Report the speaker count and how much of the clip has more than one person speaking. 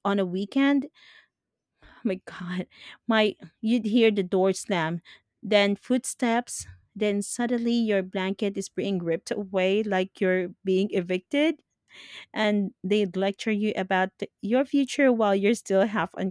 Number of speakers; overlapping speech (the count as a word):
one, no overlap